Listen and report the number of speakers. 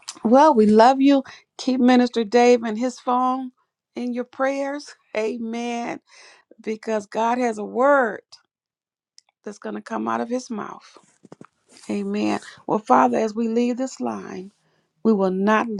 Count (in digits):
1